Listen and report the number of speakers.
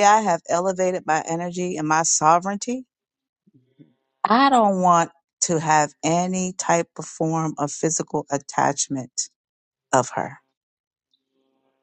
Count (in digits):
1